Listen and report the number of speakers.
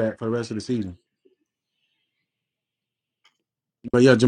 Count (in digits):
1